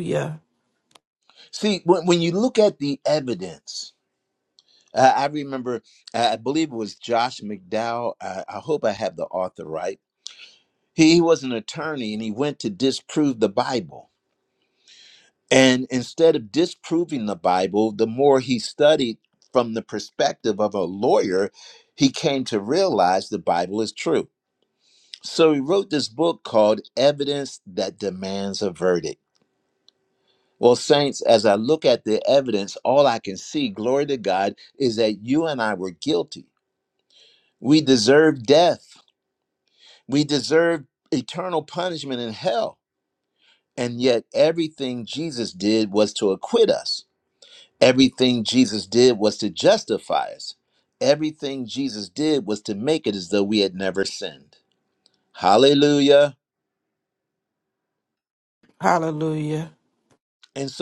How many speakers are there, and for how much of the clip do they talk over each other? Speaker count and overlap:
two, no overlap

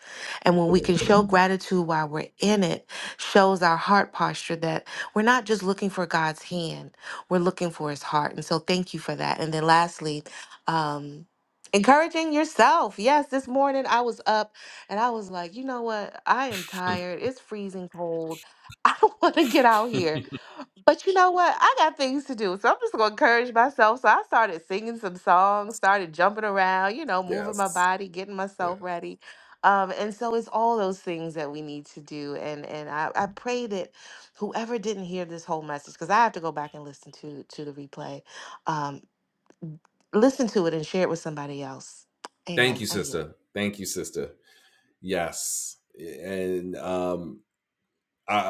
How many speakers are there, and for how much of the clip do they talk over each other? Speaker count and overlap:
two, about 3%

